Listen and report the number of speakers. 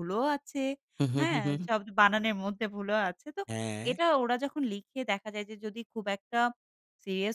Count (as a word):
two